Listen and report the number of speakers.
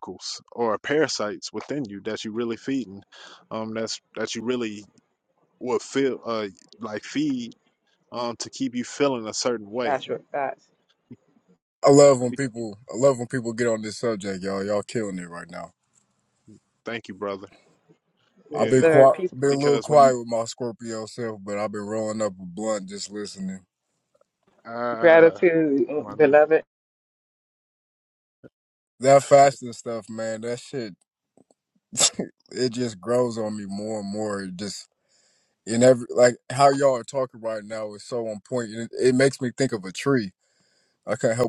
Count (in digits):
3